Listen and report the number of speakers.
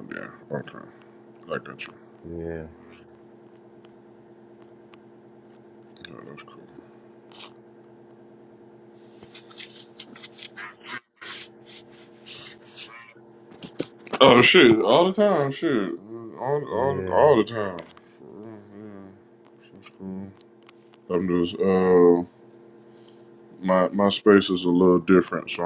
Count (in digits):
2